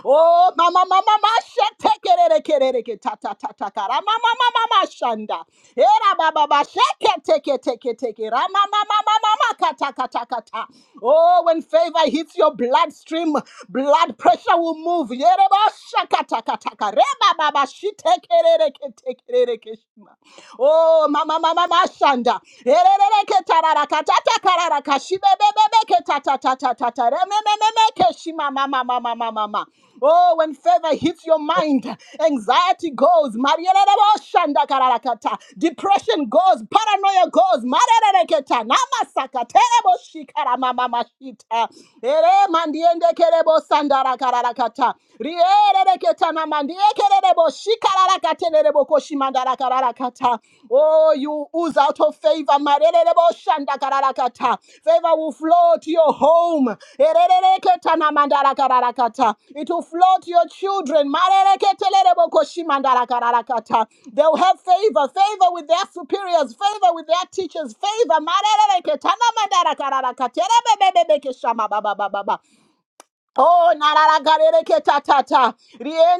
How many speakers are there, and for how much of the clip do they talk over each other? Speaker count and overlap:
1, no overlap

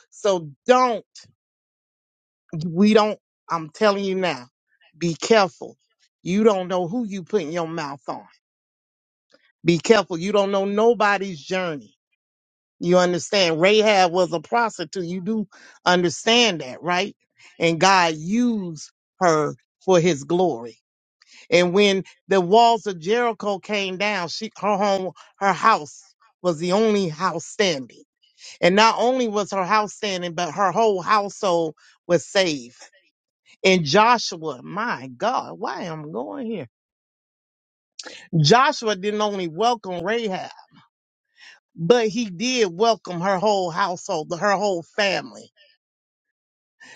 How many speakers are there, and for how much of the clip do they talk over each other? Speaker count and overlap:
1, no overlap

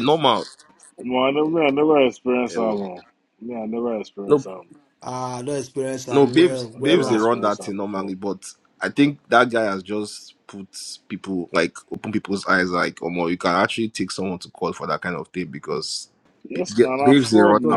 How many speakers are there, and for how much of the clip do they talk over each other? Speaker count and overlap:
3, about 21%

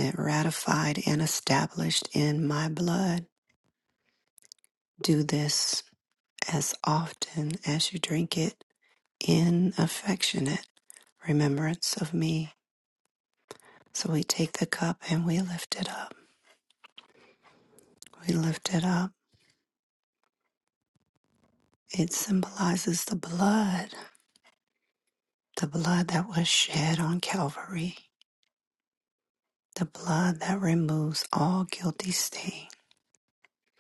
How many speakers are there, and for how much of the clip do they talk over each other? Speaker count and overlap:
1, no overlap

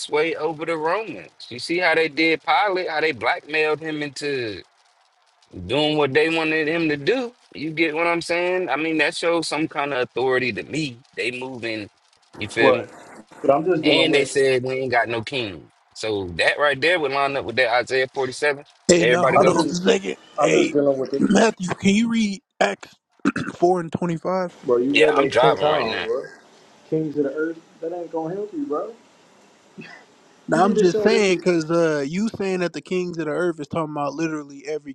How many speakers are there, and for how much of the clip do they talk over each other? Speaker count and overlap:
3, about 12%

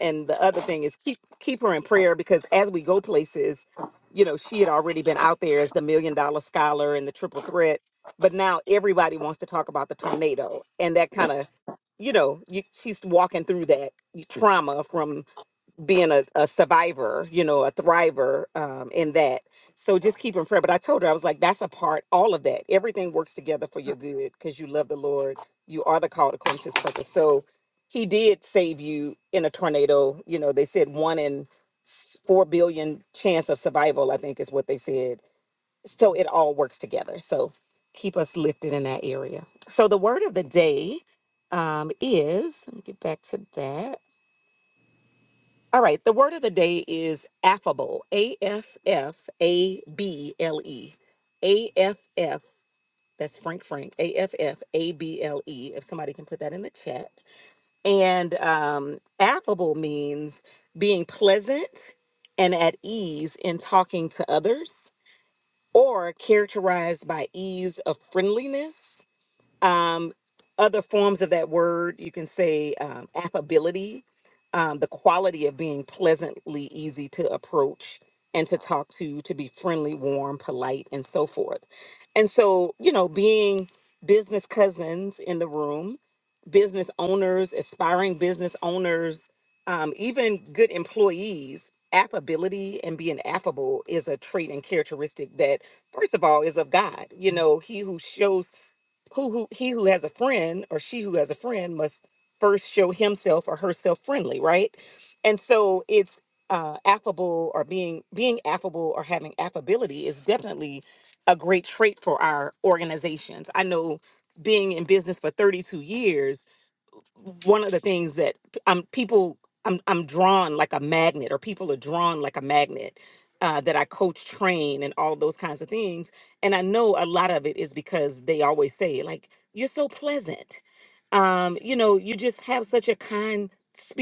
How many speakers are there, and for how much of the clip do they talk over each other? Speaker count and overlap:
1, no overlap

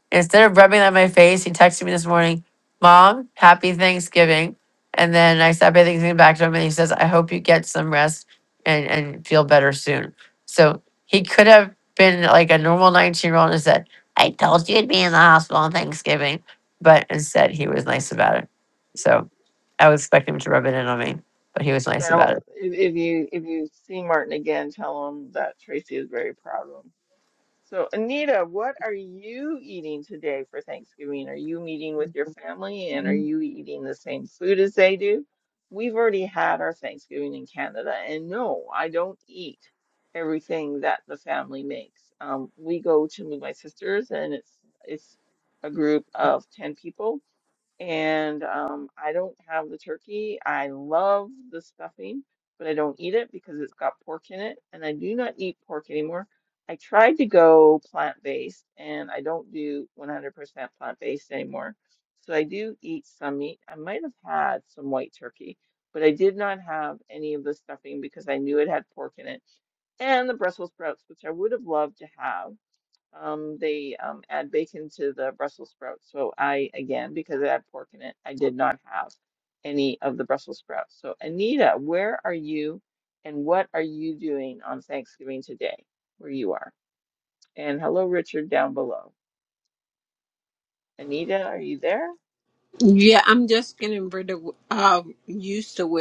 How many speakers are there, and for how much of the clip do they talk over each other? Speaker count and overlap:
3, about 1%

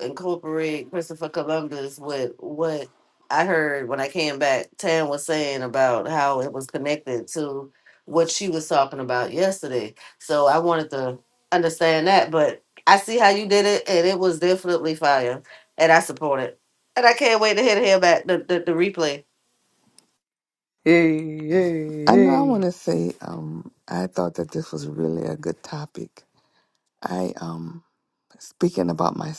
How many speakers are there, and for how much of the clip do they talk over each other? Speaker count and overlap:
3, about 2%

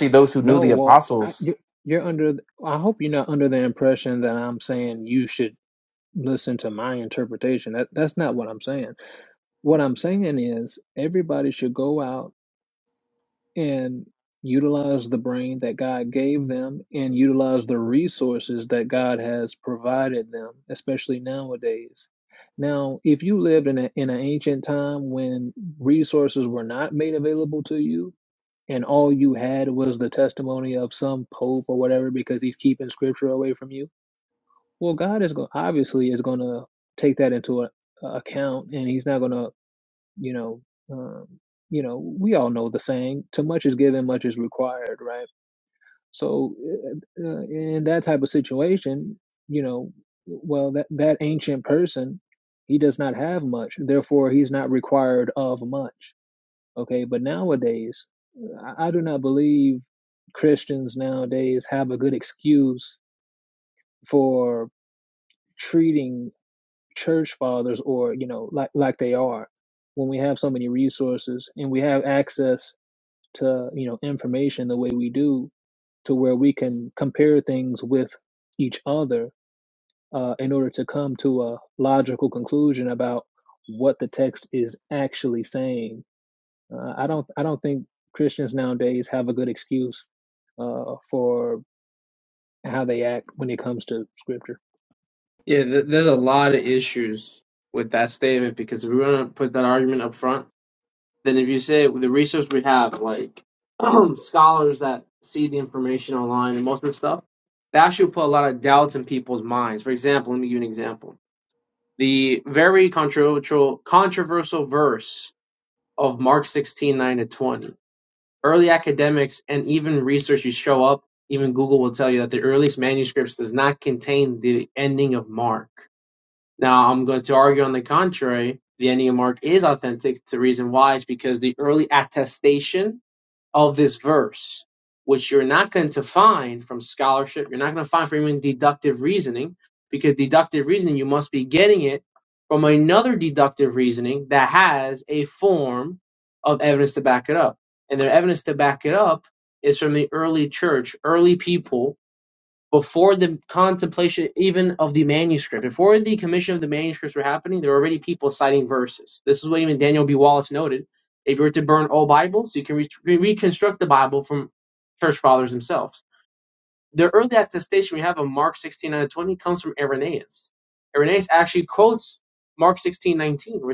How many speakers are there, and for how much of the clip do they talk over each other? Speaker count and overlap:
3, under 1%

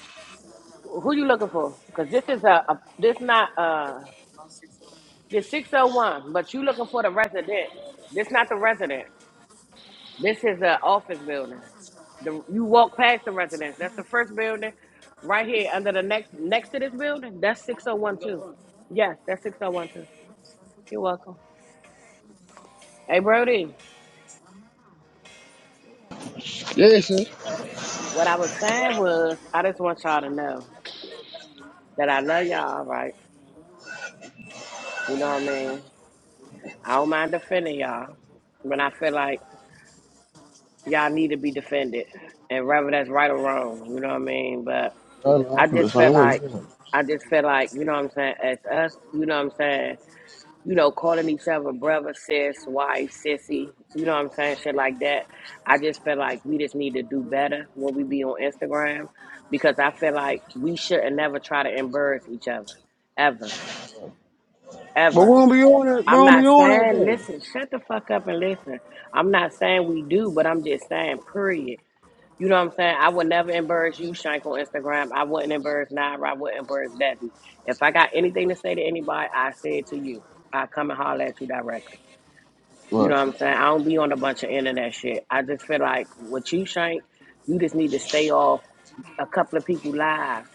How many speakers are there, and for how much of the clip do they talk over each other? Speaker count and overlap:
2, about 3%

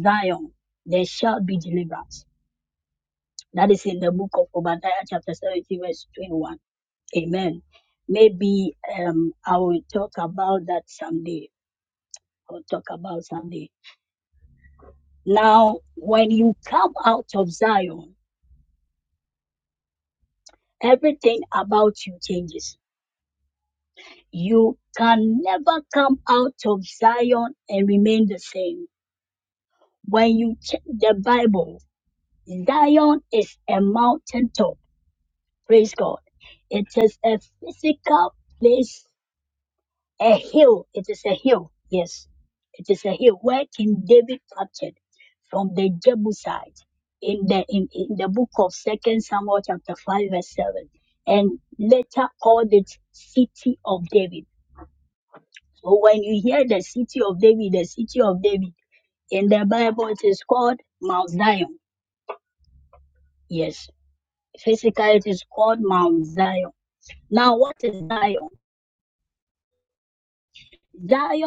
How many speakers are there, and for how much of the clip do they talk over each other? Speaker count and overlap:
1, no overlap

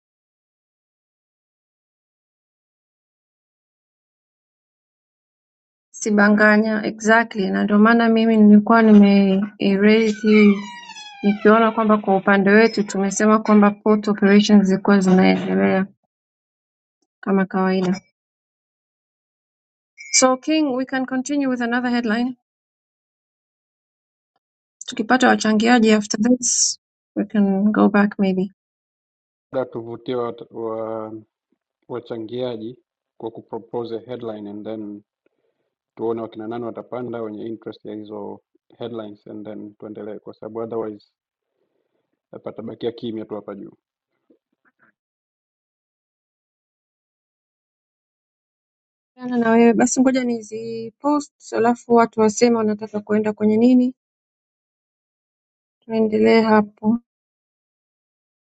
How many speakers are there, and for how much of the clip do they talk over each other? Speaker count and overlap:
2, no overlap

